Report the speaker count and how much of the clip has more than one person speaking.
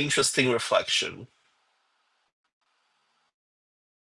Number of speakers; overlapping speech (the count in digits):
1, no overlap